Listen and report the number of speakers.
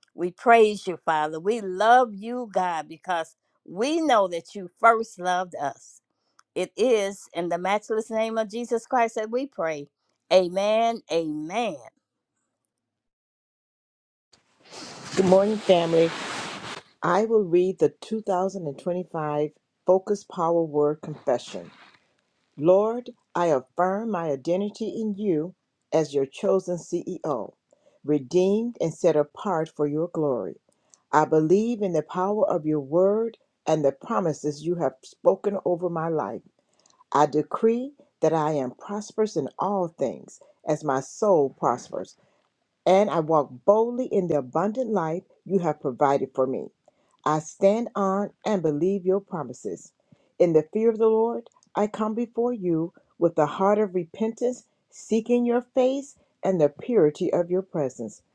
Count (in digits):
2